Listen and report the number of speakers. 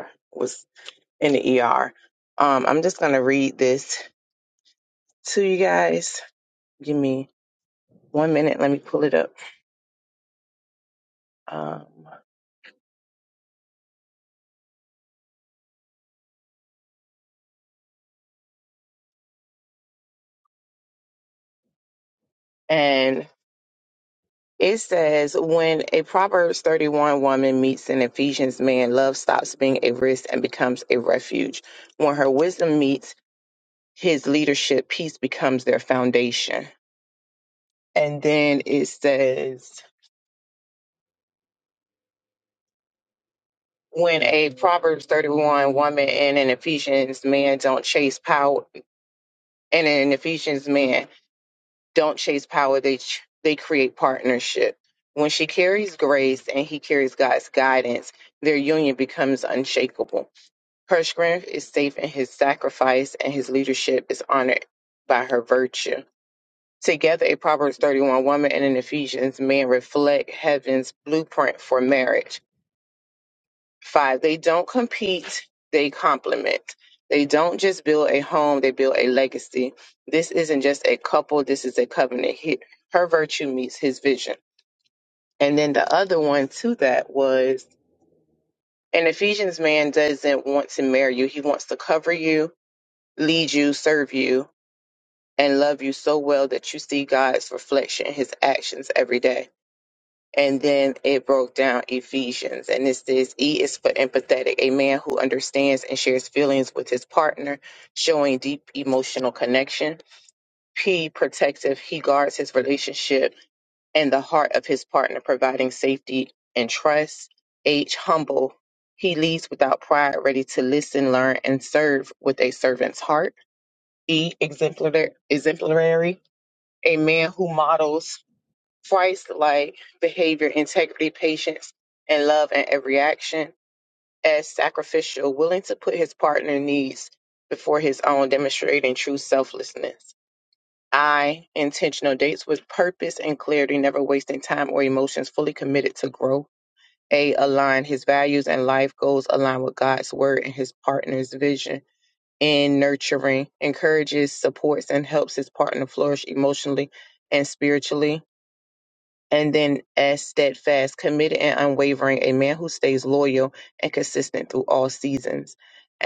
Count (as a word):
one